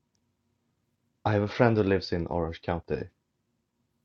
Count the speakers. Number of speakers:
1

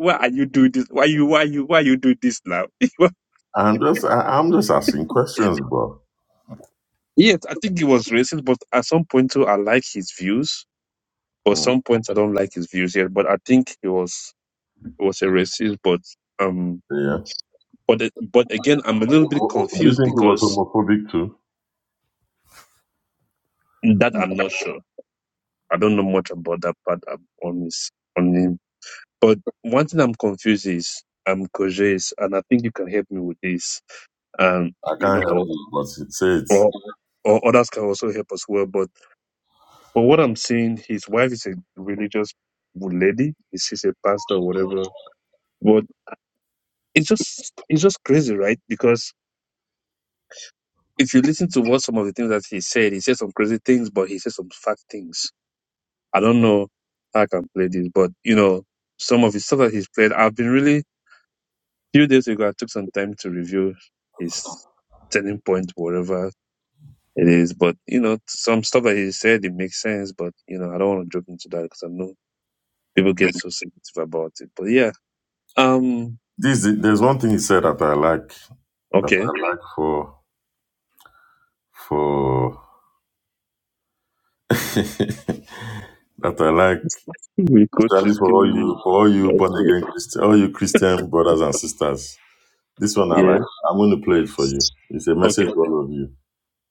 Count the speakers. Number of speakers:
2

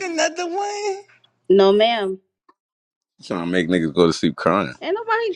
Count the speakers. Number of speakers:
3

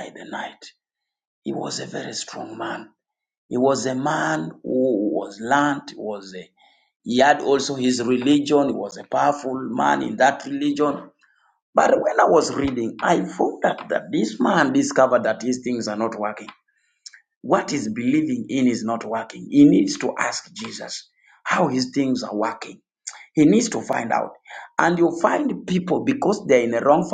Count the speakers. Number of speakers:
1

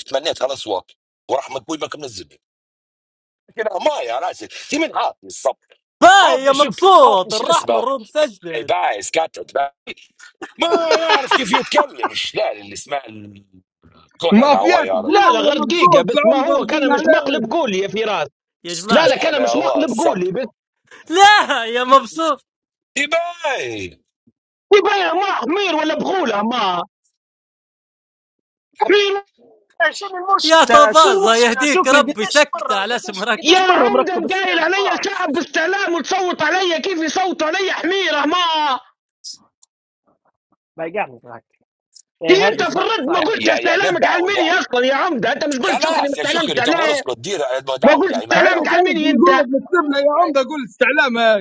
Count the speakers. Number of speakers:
5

